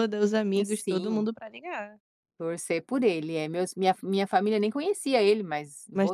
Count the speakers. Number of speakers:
2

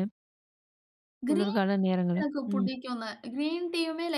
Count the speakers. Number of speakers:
2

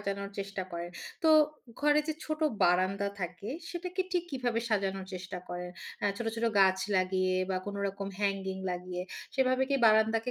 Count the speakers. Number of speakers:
1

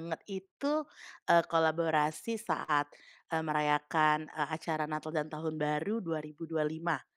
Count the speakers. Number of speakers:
1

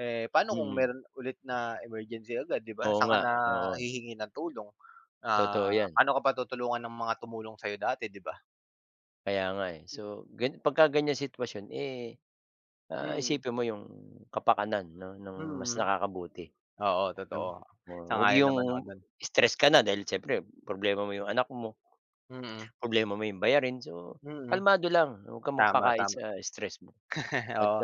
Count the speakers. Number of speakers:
2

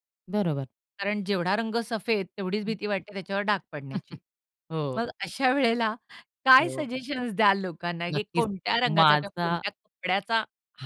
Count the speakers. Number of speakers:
2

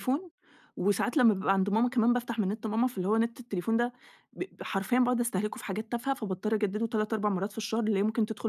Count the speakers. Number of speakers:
1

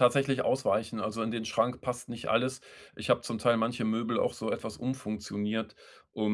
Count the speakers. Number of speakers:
1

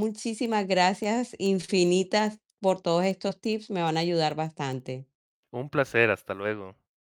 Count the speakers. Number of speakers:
2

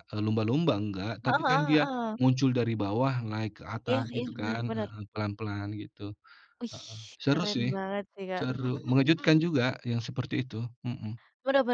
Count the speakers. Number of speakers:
2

